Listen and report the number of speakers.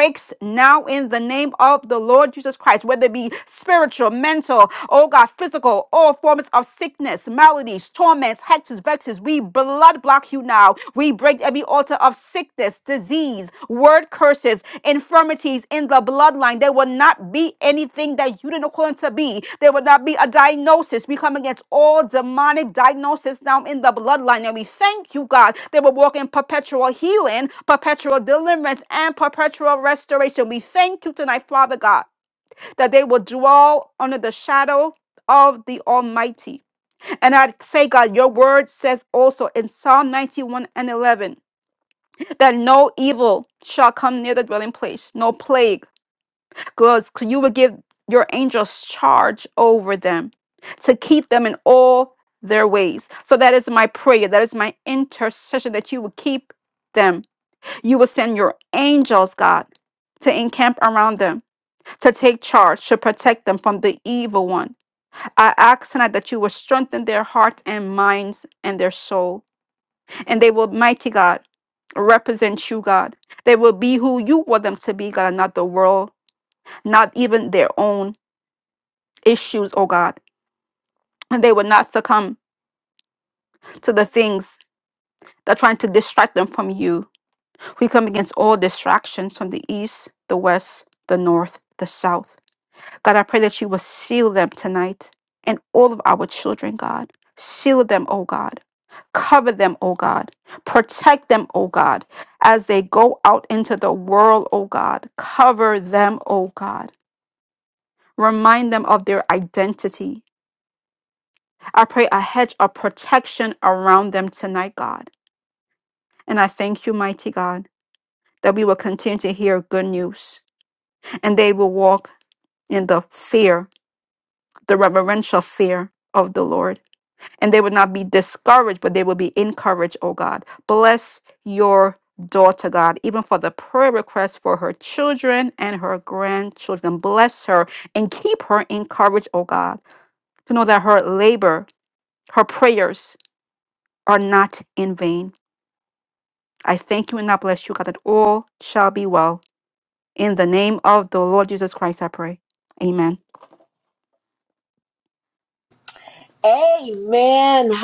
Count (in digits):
2